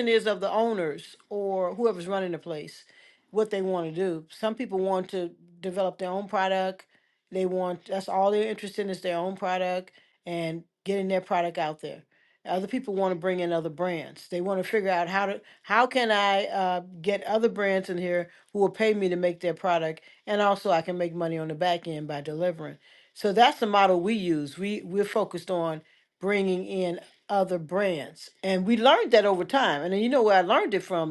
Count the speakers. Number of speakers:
1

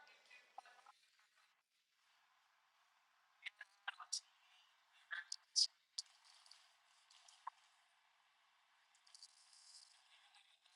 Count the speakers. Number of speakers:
0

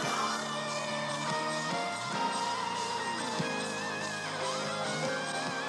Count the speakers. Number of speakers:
0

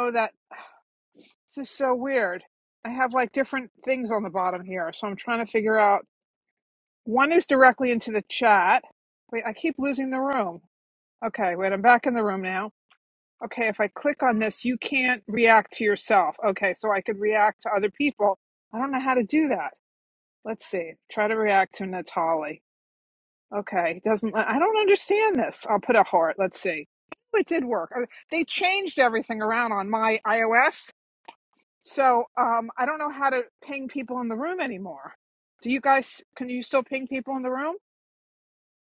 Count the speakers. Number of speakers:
1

